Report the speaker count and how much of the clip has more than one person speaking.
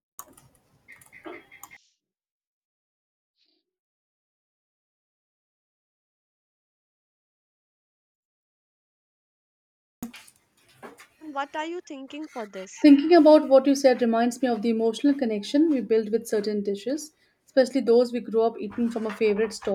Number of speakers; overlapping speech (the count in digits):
2, no overlap